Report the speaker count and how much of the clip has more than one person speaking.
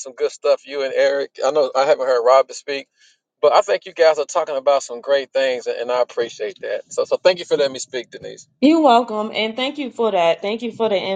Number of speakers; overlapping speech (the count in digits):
2, no overlap